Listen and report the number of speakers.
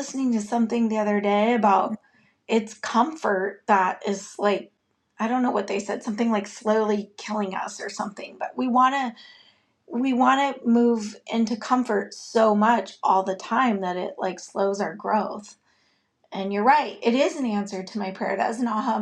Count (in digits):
1